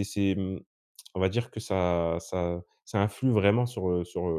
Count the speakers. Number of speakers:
one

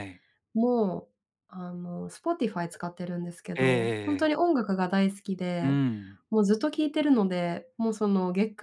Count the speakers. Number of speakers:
two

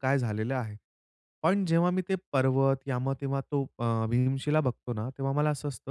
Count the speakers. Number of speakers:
one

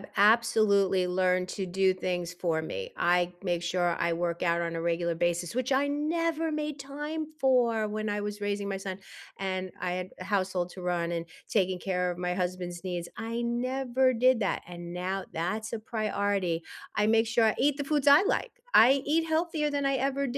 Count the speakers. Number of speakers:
one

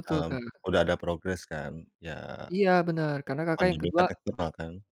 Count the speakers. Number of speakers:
two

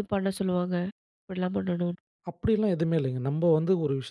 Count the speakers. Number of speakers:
two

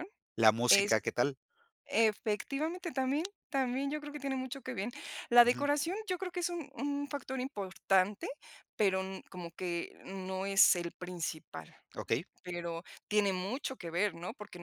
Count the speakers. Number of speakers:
two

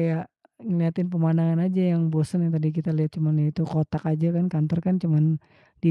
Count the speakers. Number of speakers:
one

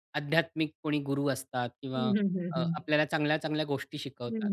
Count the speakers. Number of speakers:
two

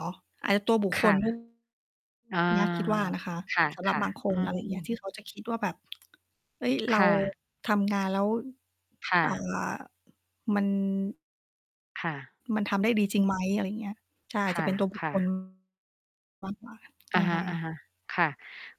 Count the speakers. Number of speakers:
two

